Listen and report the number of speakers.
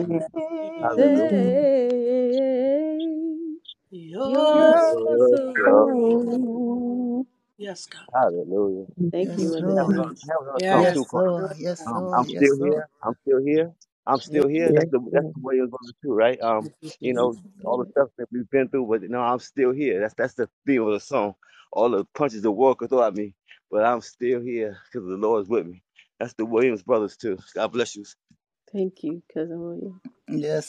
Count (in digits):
5